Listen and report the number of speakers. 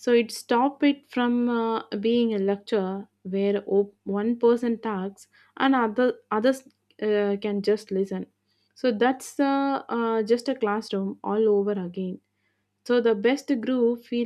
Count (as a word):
one